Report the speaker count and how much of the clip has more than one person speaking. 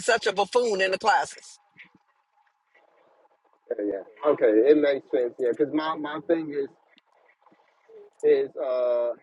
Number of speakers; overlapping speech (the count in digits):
2, no overlap